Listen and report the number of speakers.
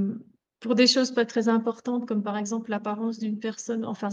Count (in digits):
1